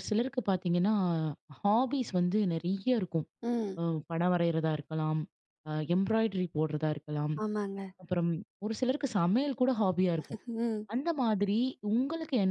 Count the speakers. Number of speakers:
two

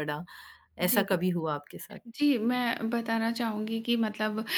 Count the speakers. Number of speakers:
two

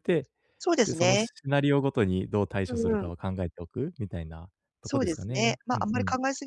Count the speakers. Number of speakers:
two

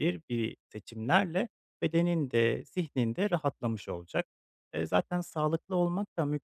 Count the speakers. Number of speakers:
one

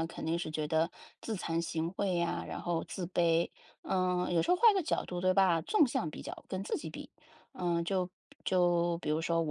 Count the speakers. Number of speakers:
one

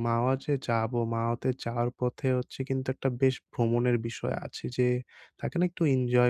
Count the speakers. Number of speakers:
one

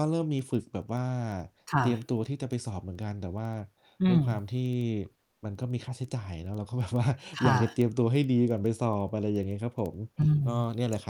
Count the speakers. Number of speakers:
two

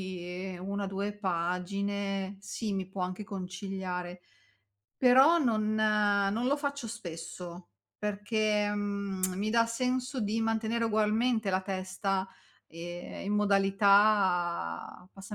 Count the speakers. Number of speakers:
one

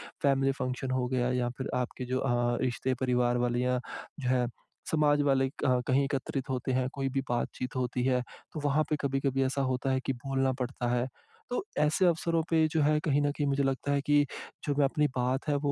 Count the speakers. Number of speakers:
one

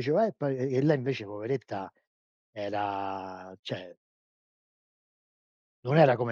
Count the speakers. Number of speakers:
one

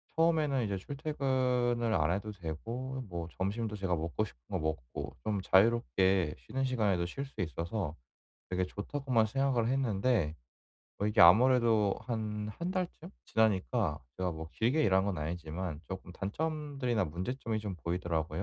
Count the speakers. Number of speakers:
one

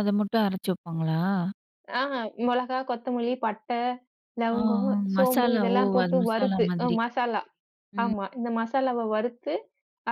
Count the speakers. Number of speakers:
two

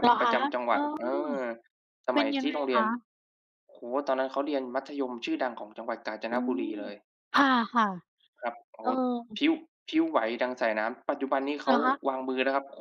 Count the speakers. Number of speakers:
two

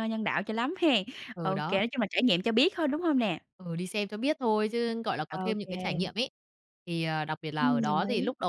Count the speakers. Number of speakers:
two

